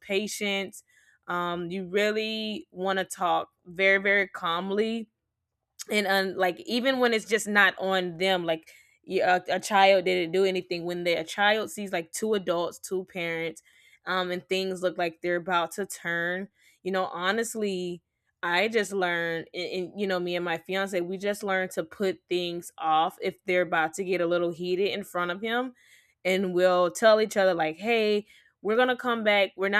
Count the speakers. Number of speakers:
one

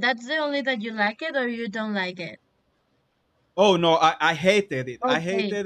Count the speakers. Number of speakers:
two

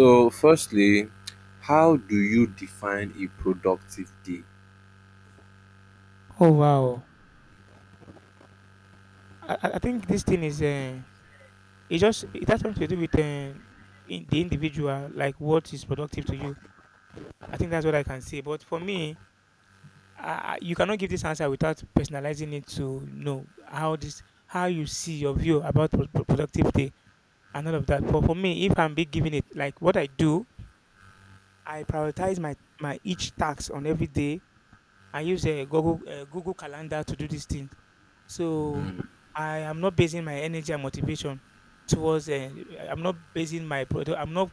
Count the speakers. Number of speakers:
two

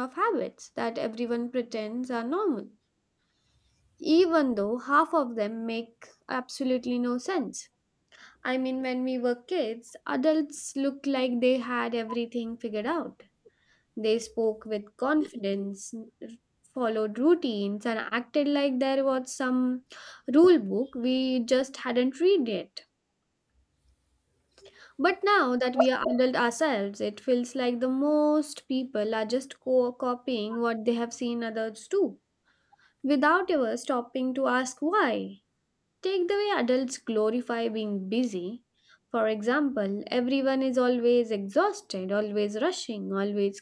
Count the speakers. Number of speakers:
one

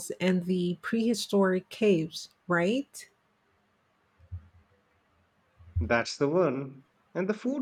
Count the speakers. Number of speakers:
two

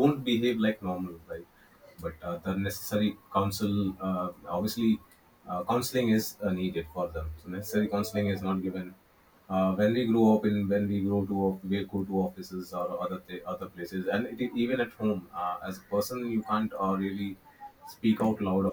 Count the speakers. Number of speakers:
one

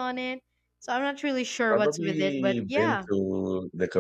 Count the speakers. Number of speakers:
two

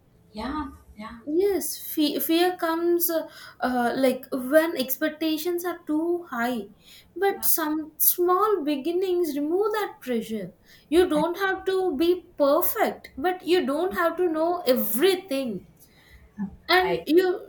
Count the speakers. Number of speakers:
two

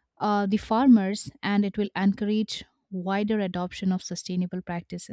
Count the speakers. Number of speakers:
one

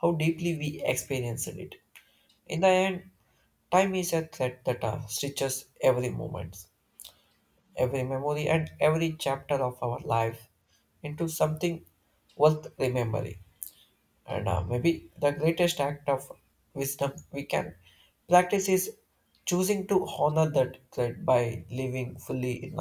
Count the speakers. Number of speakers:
one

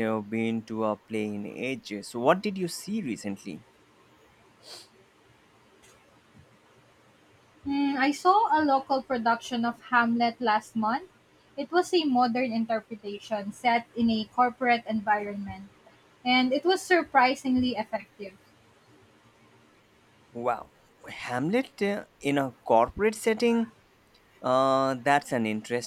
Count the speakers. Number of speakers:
two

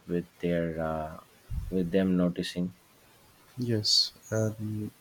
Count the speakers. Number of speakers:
two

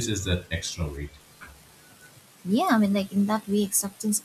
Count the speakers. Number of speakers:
two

